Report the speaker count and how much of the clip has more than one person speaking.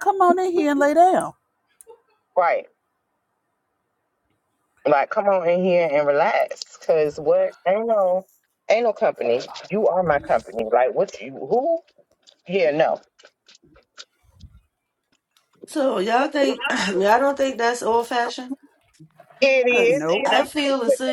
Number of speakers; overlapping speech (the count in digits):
3, about 4%